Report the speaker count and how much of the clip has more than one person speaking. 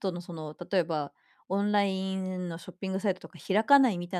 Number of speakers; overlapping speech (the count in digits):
1, no overlap